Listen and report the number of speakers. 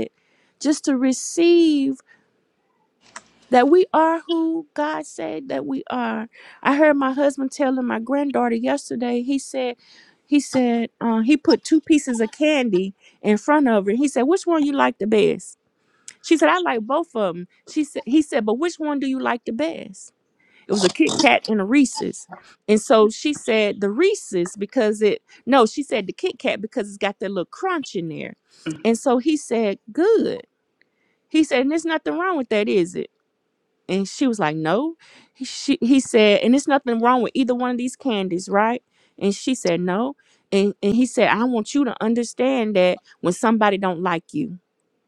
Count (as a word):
one